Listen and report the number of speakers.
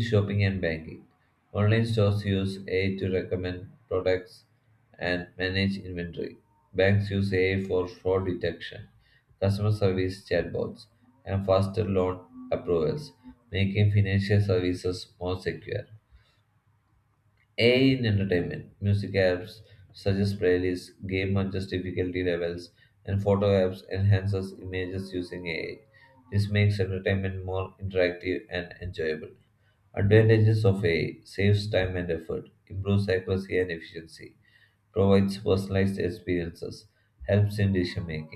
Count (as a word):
one